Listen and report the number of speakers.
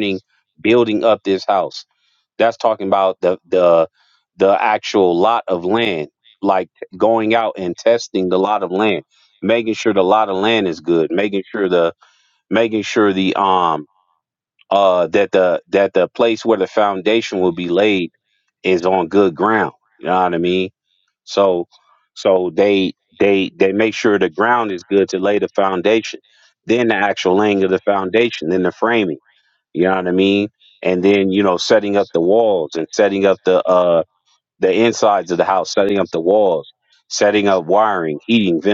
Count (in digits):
1